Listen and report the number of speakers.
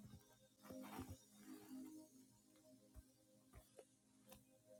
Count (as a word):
zero